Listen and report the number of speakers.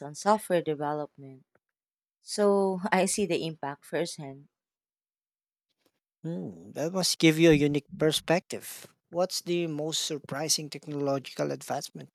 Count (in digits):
2